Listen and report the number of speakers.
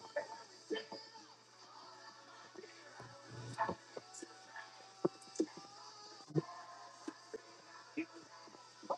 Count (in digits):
0